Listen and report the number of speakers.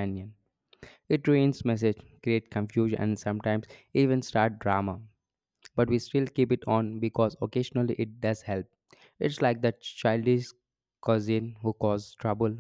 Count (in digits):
1